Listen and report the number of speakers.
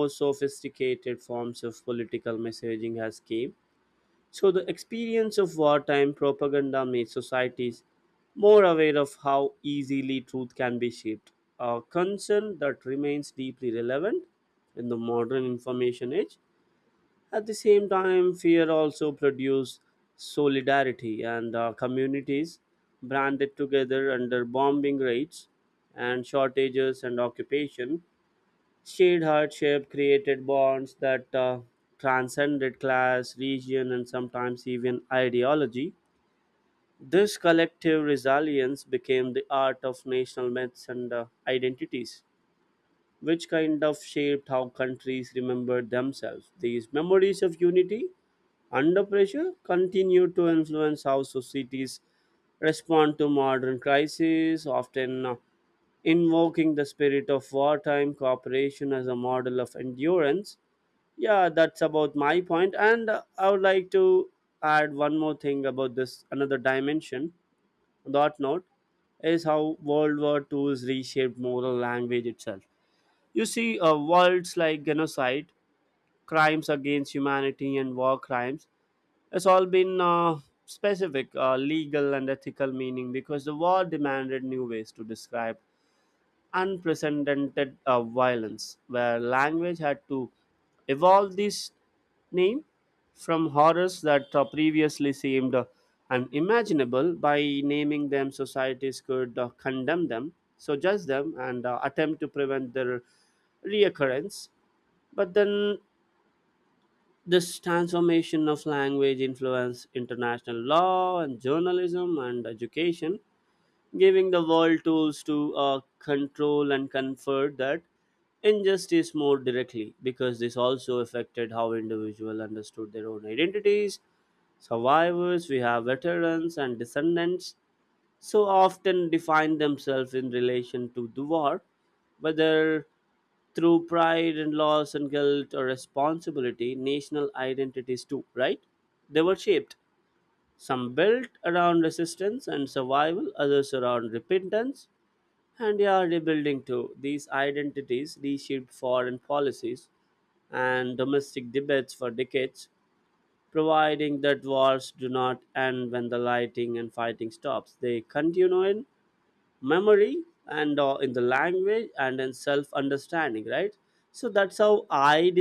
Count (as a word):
one